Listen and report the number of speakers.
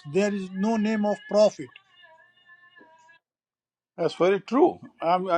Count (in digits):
2